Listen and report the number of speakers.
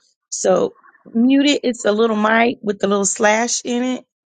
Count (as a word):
one